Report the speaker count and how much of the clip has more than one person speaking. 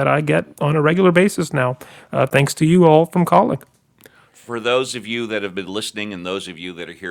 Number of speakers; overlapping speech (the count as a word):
two, no overlap